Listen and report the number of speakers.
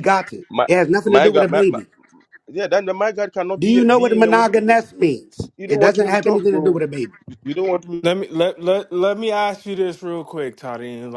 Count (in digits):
3